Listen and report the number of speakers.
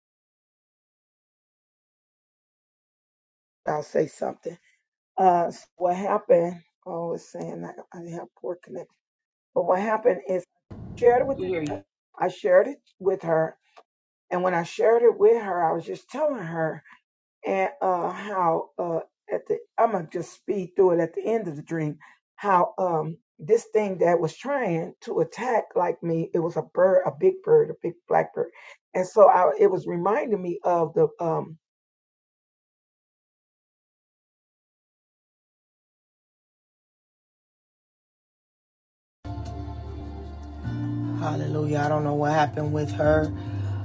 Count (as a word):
two